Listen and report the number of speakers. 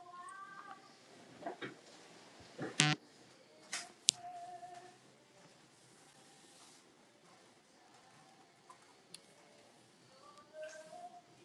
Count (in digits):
0